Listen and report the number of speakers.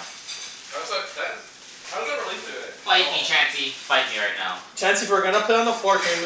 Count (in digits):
3